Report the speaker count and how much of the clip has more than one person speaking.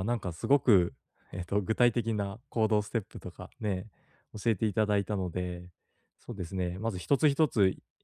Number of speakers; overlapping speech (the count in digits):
1, no overlap